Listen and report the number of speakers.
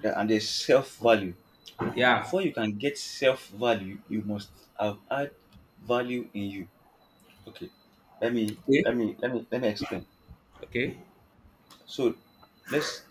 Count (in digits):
2